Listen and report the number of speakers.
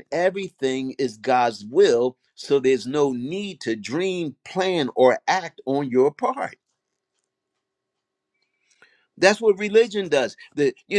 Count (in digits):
1